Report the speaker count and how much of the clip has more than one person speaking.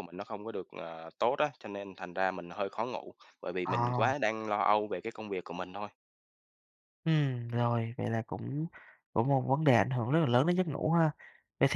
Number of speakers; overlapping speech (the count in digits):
2, about 4%